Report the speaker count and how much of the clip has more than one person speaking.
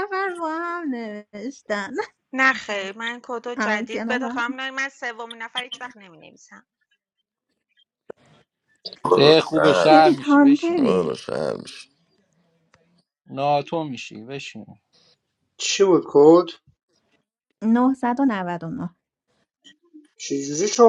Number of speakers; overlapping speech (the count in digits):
5, about 13%